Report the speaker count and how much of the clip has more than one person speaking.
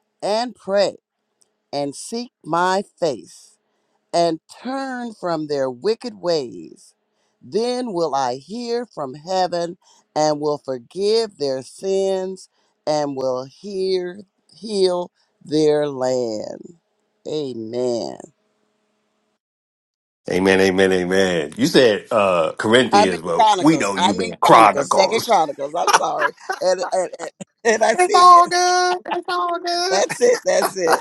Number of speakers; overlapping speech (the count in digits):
2, about 10%